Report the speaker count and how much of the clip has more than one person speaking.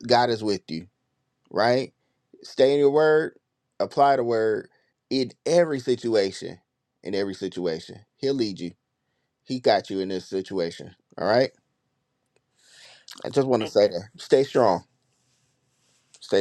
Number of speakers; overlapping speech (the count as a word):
one, no overlap